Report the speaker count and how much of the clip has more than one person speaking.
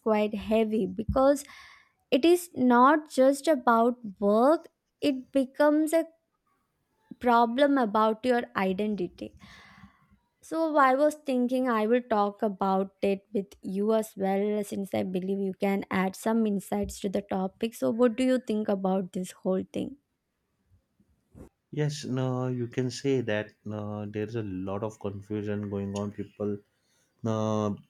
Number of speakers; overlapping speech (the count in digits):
2, no overlap